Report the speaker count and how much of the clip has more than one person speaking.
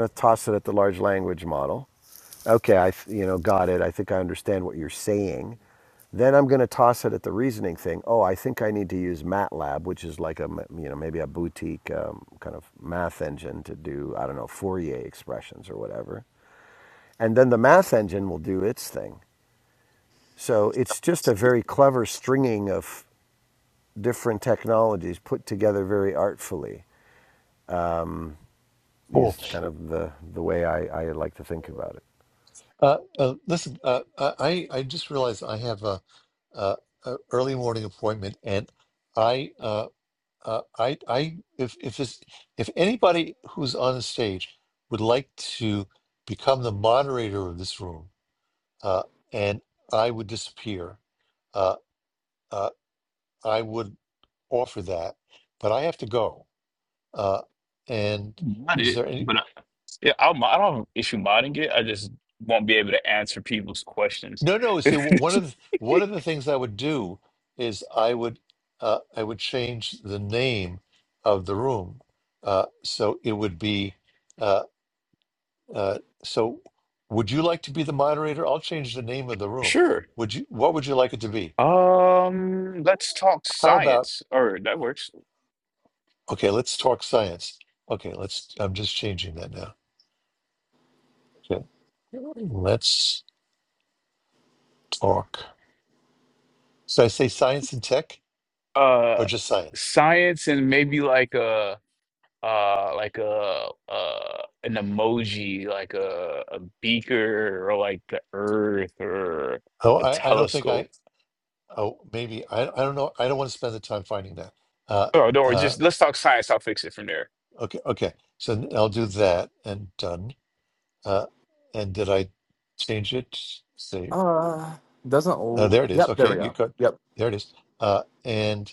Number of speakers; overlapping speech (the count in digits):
4, about 3%